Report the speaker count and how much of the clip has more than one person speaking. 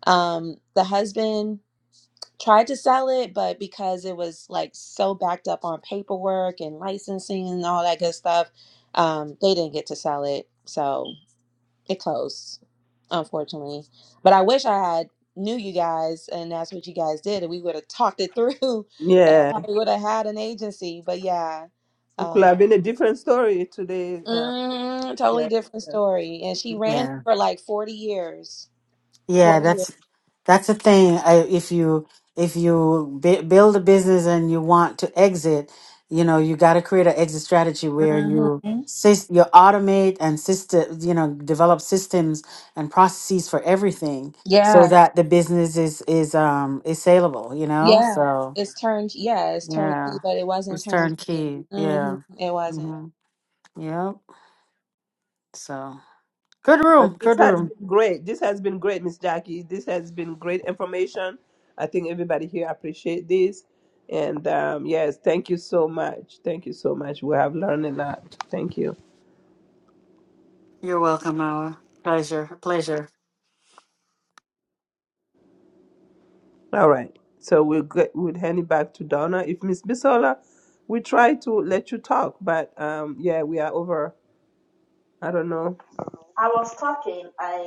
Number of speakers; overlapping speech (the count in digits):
4, about 6%